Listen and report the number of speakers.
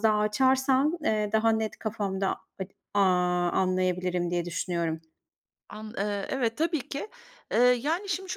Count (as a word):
two